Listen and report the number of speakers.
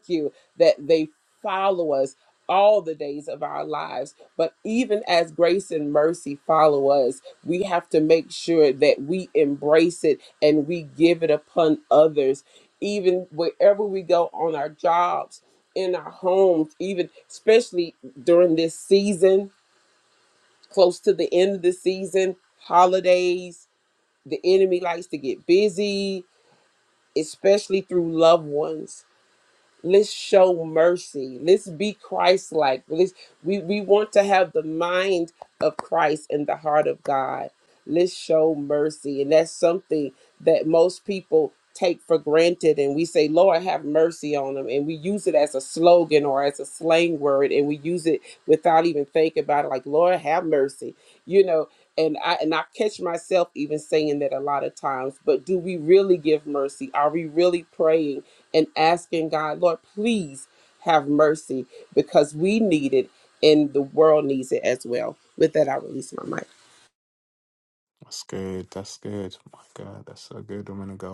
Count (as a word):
two